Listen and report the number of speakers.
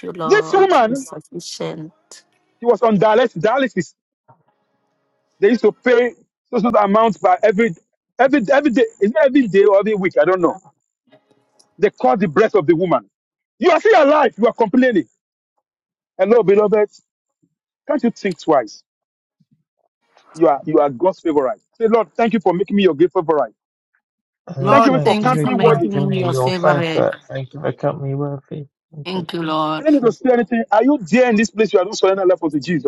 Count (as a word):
three